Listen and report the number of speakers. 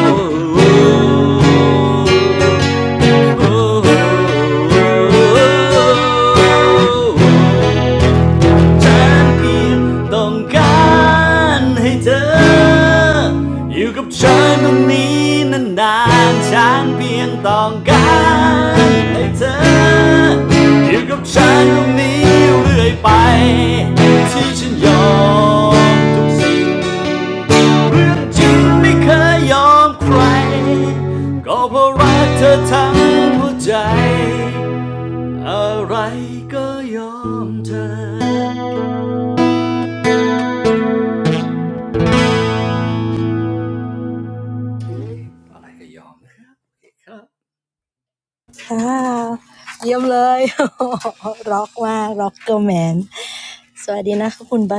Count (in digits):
2